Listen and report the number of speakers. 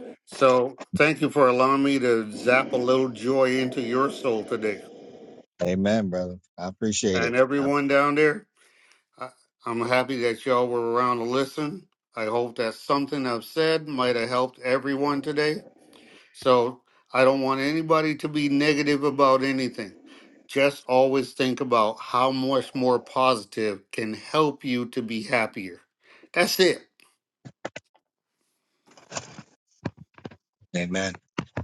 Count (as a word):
two